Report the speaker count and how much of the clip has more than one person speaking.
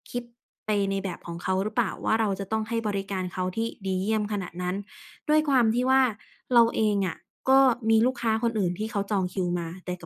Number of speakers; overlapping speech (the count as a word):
one, no overlap